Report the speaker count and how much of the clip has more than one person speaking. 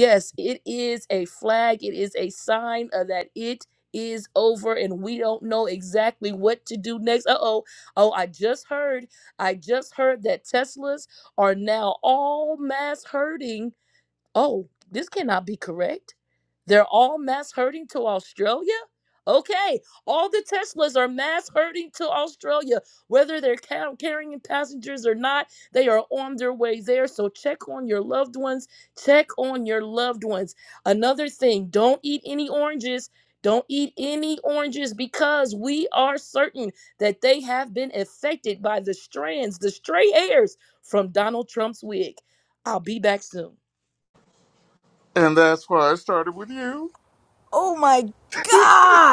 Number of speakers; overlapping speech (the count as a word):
three, no overlap